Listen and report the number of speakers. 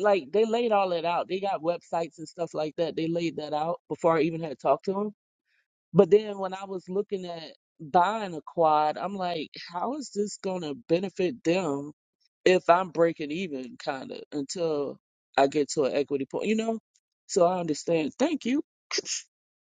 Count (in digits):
1